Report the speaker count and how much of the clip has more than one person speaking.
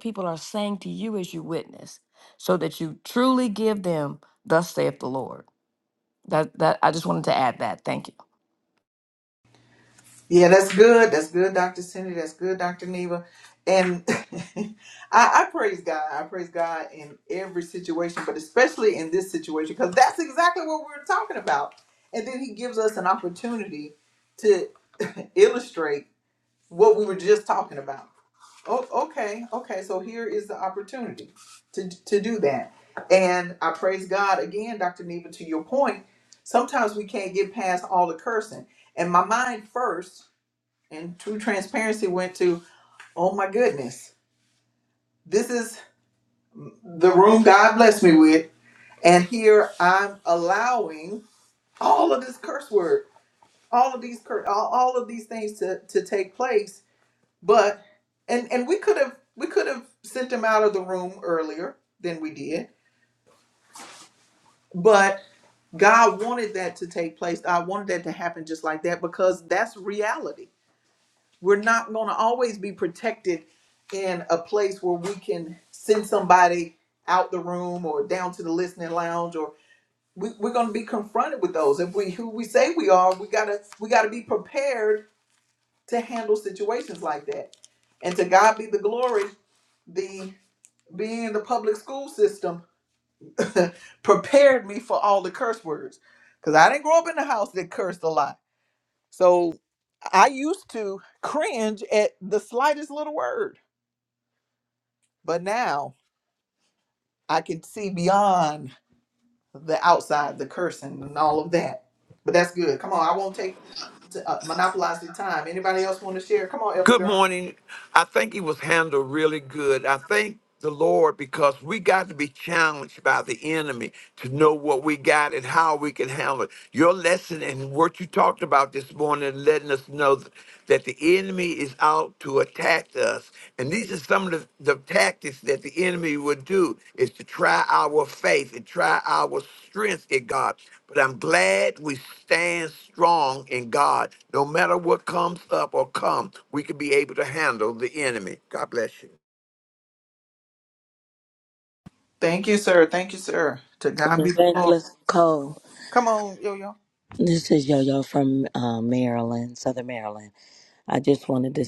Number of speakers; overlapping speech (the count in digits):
4, about 1%